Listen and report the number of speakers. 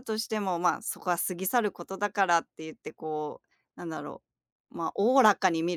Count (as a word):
one